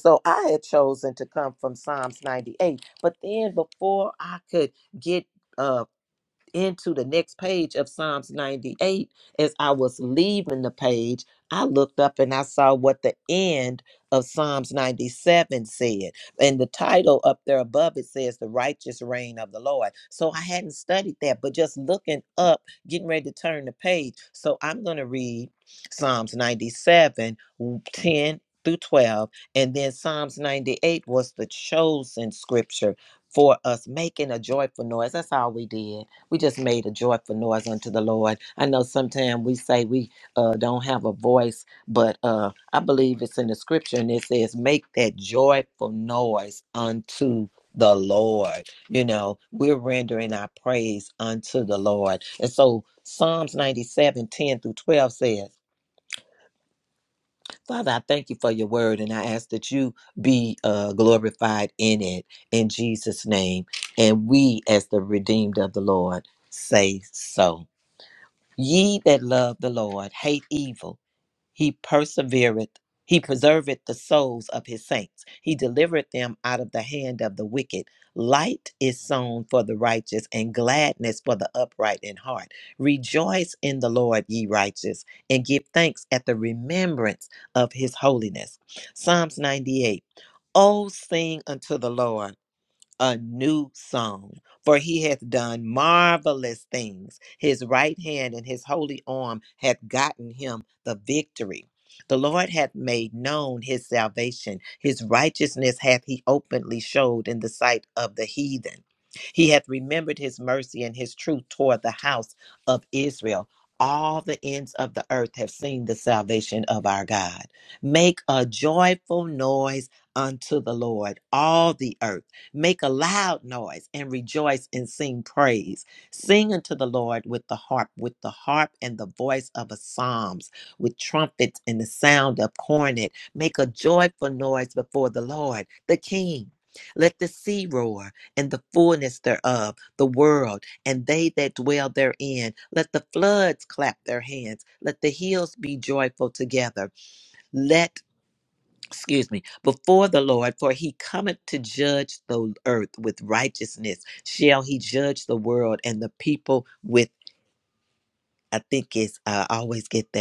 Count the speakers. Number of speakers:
one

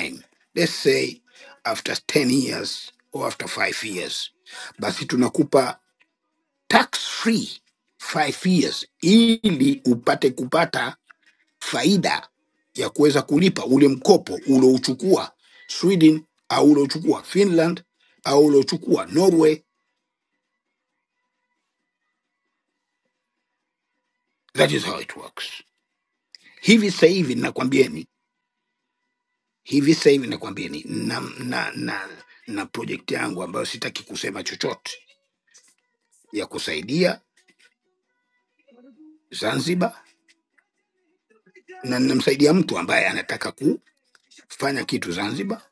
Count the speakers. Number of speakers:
one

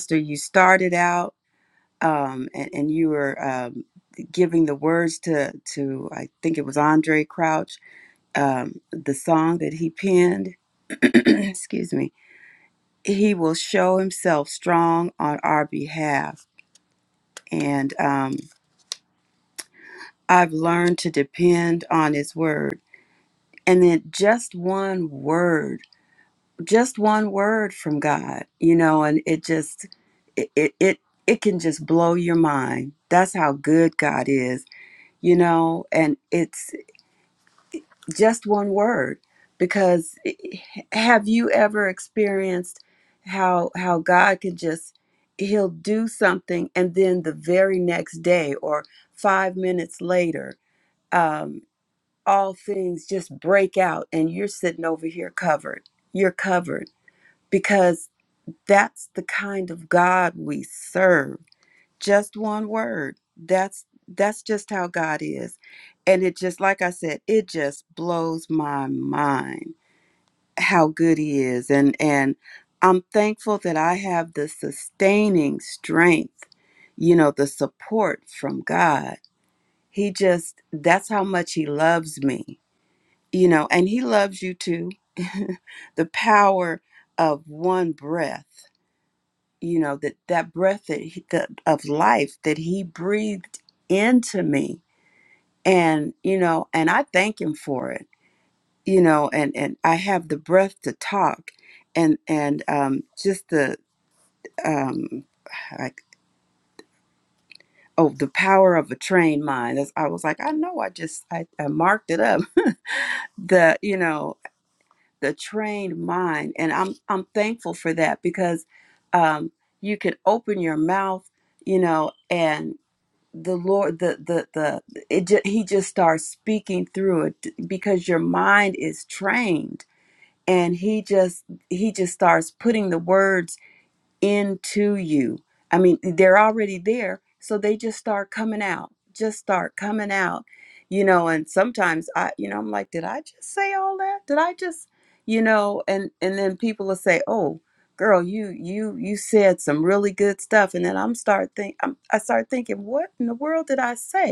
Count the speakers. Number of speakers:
one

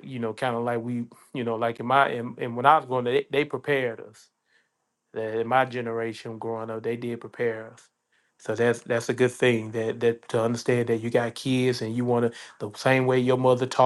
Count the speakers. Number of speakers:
one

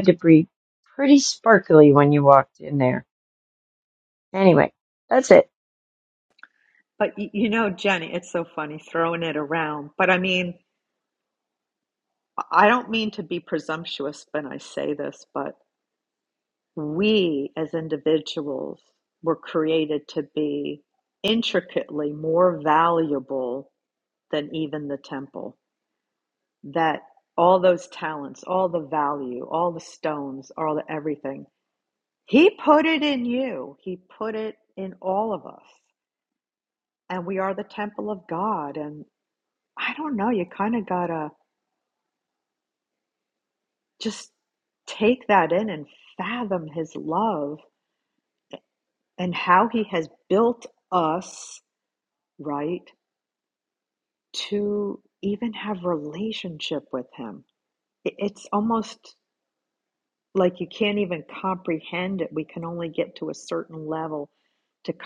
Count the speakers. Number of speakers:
two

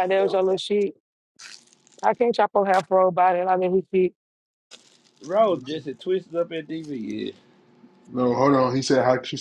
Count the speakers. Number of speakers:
three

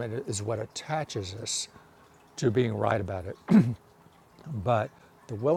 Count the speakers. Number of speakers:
one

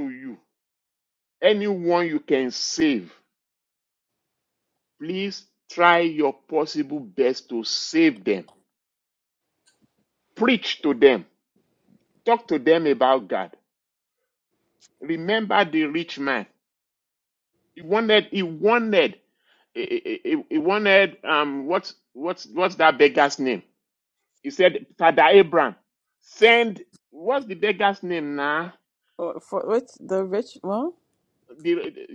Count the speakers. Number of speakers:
two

